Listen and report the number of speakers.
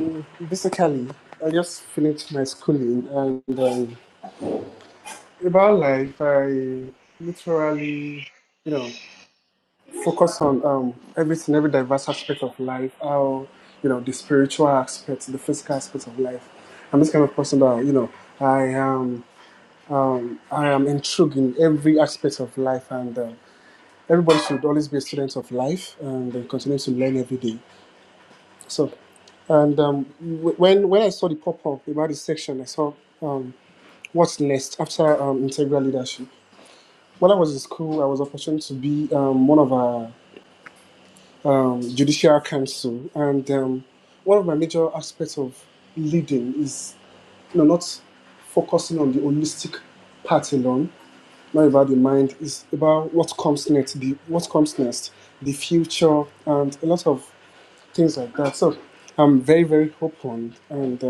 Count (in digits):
1